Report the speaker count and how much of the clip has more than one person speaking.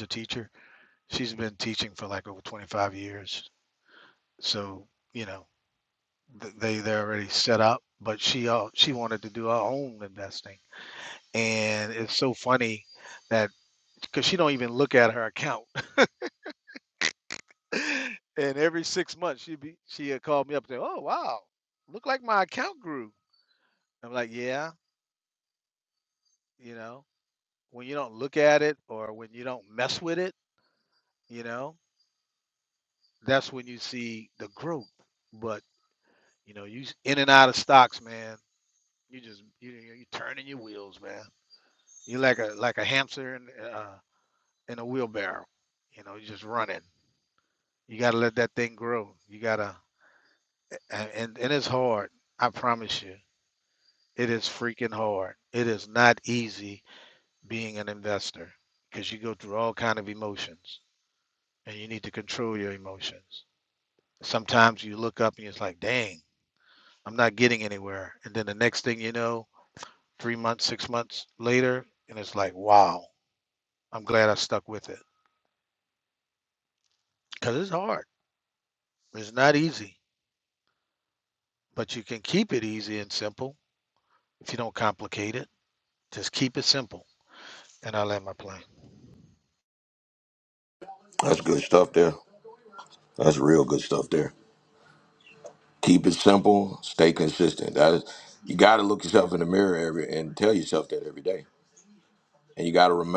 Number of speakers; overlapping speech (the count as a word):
two, no overlap